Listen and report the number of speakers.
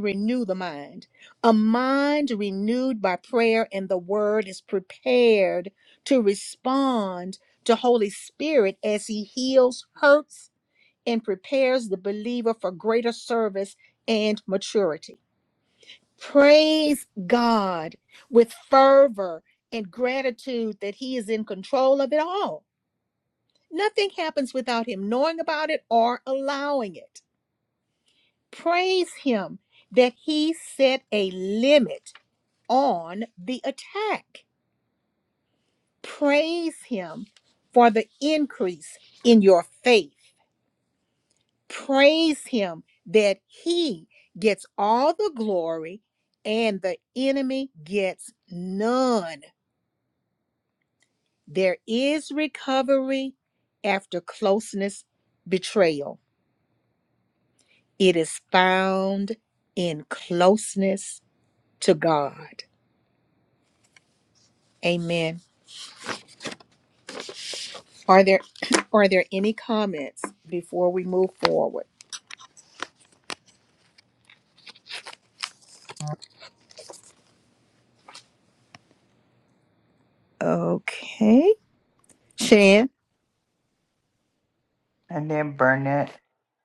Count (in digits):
2